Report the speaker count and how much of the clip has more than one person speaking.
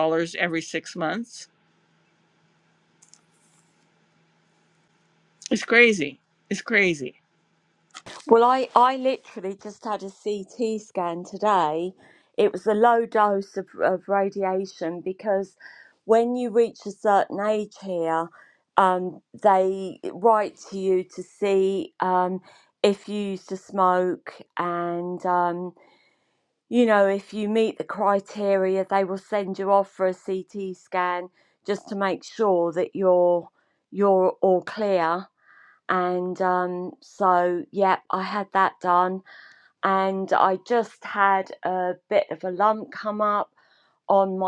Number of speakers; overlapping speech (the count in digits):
2, no overlap